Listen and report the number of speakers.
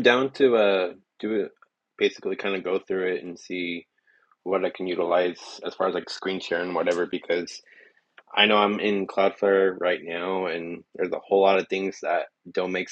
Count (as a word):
one